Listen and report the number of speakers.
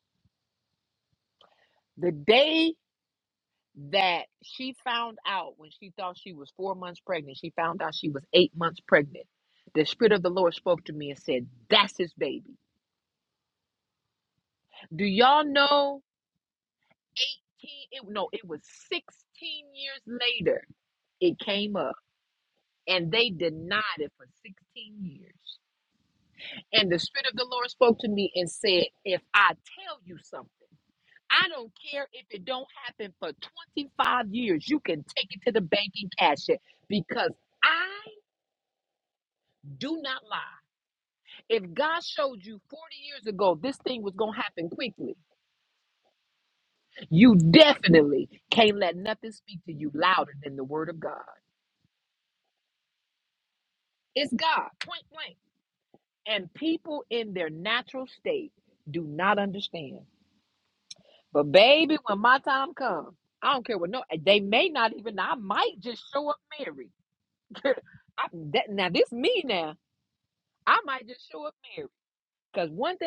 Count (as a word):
one